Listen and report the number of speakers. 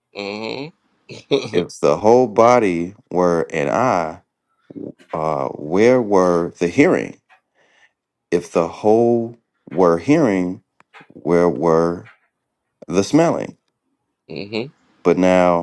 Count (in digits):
2